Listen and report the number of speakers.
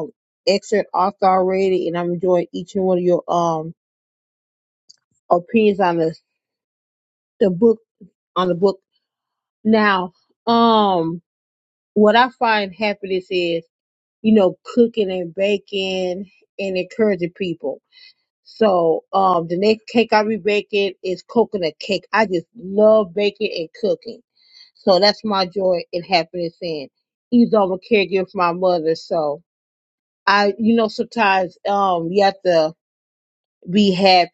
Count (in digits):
1